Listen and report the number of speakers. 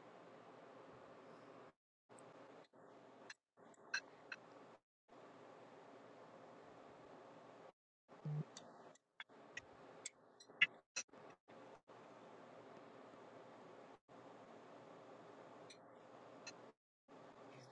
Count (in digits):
0